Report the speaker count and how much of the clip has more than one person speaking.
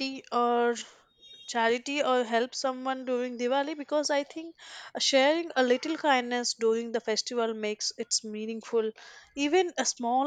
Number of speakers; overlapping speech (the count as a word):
one, no overlap